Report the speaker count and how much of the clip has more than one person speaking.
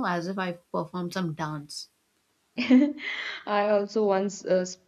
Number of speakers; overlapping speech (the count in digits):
2, no overlap